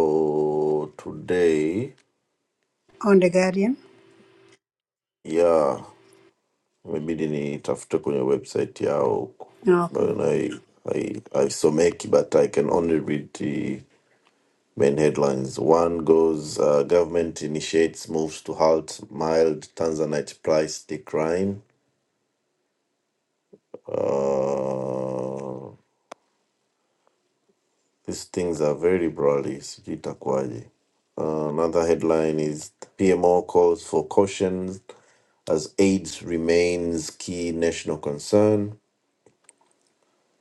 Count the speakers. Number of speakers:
two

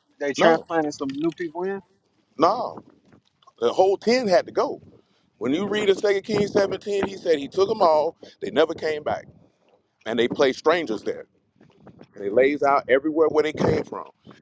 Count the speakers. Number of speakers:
two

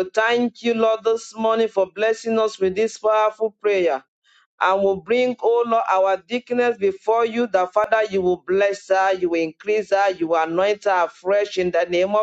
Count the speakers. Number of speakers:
one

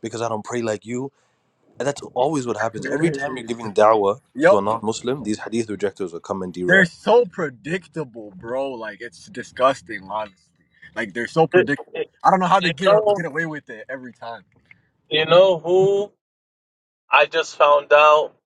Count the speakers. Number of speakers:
three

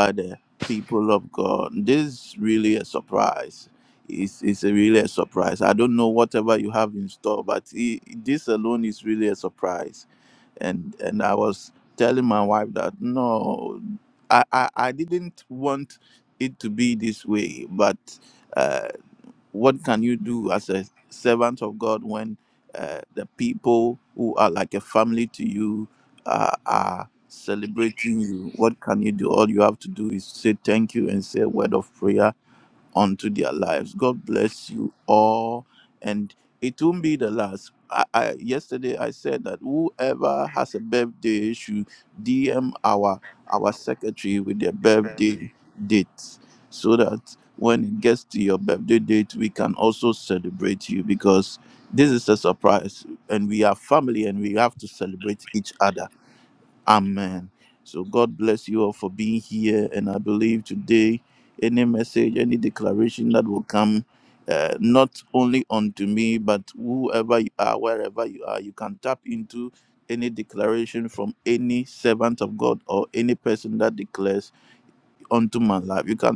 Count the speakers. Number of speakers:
one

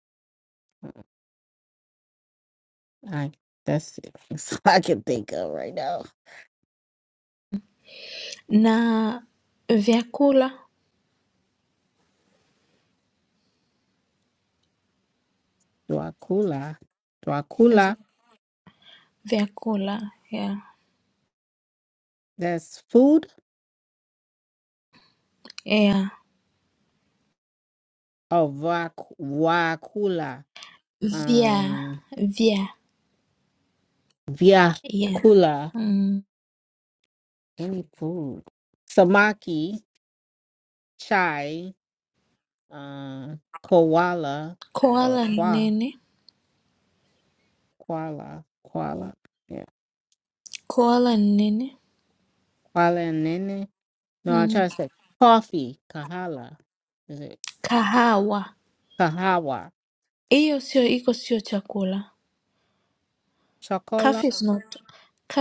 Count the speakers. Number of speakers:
two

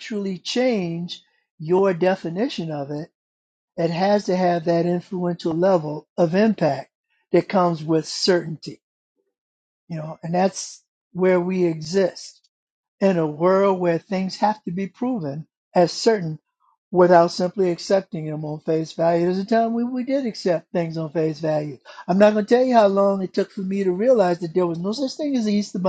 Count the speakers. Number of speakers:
one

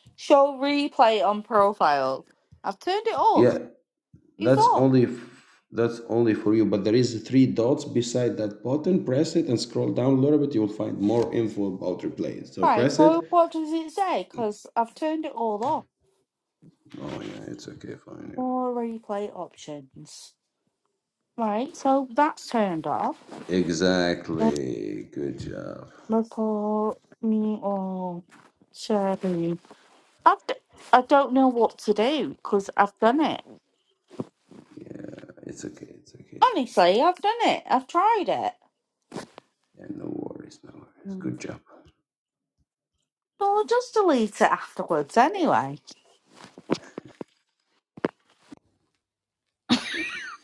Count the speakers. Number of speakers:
two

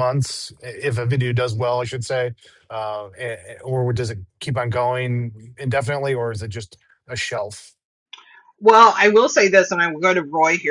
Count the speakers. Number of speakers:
two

